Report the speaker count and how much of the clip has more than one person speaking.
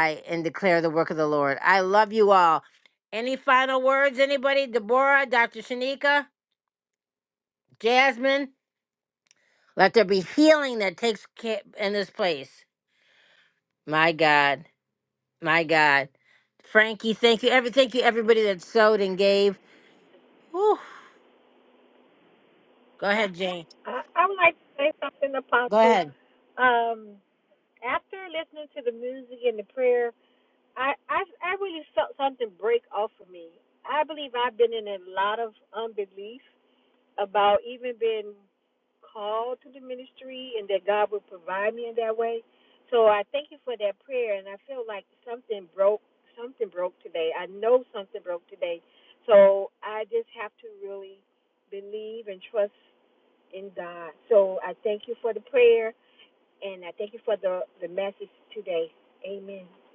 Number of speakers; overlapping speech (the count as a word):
two, under 1%